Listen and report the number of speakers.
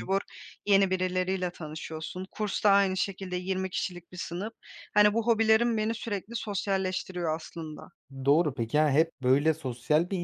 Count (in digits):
2